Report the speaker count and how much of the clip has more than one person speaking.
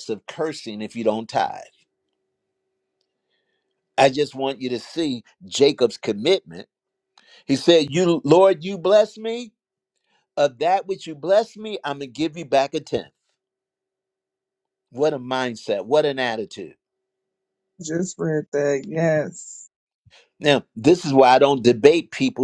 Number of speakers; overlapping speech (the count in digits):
2, no overlap